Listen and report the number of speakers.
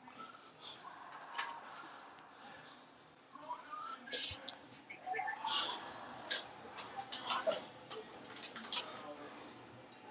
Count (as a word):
zero